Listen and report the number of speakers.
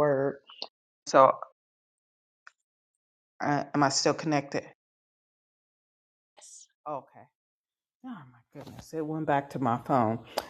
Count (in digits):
1